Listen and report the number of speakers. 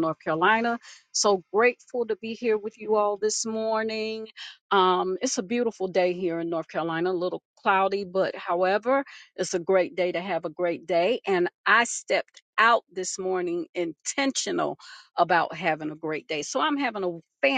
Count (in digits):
1